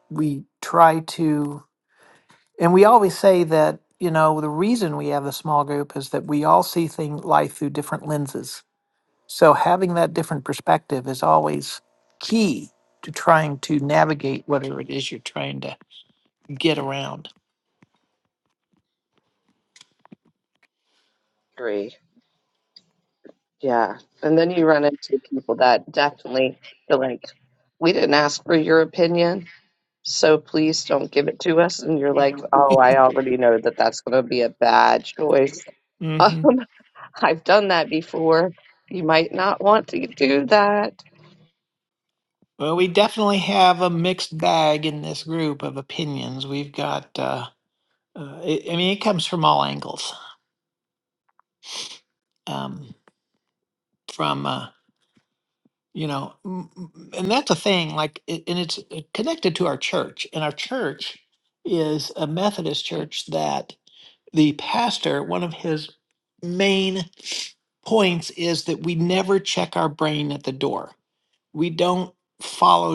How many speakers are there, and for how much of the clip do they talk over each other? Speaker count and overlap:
2, under 1%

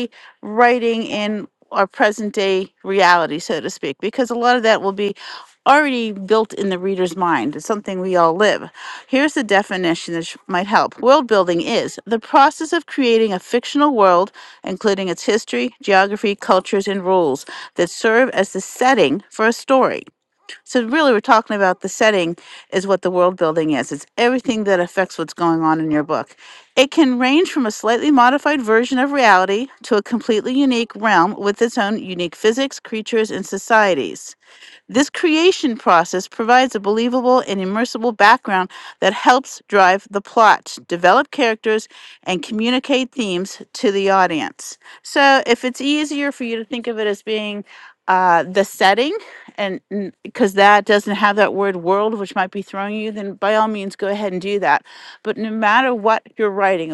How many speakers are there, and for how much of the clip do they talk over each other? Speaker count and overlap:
1, no overlap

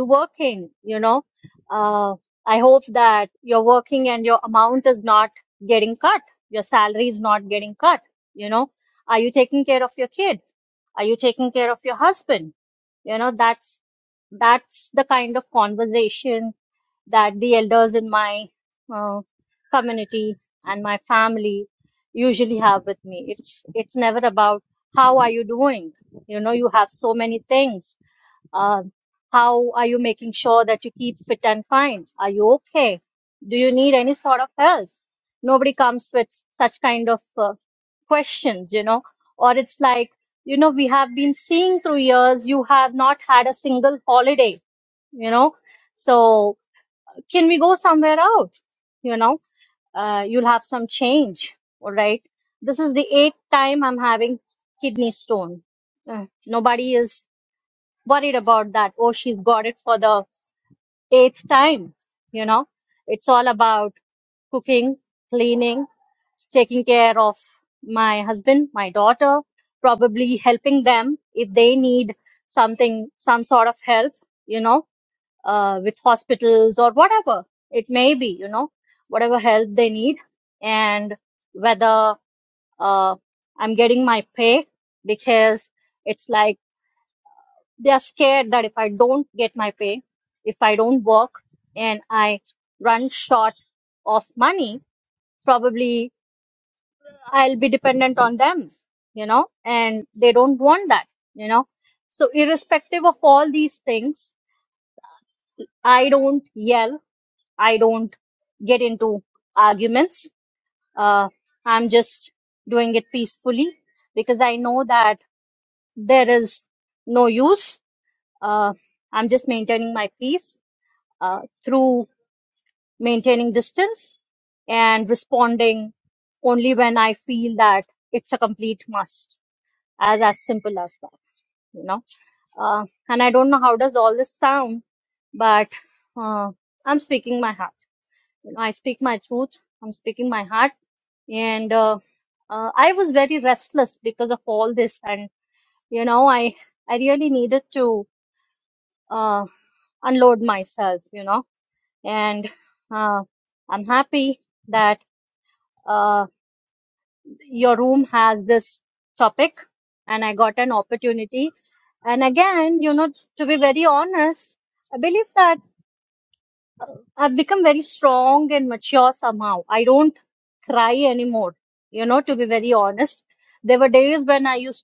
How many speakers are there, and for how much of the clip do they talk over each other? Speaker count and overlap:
1, no overlap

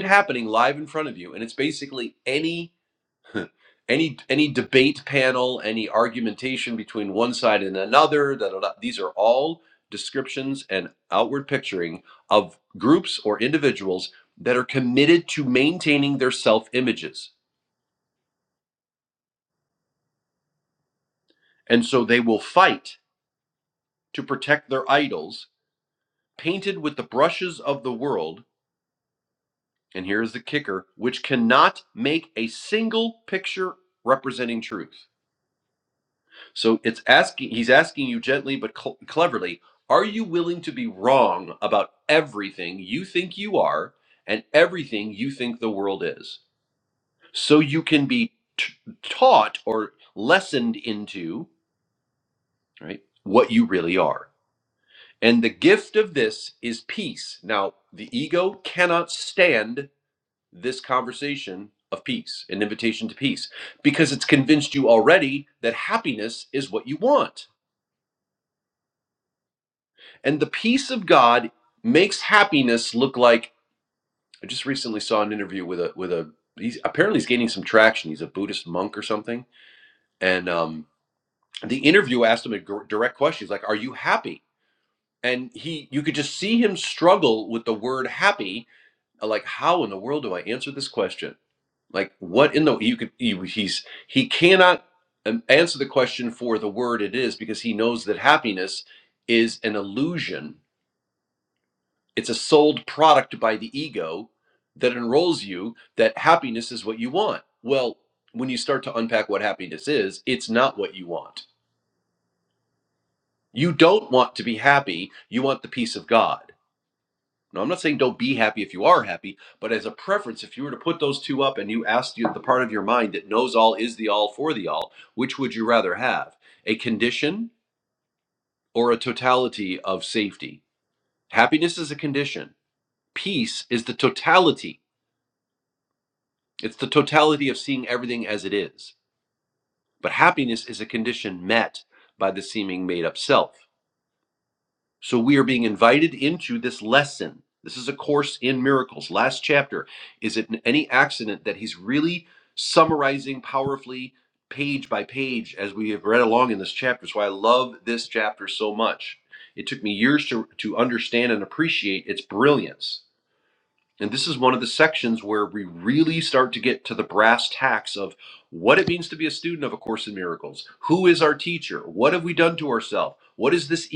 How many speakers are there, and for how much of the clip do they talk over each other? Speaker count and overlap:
1, no overlap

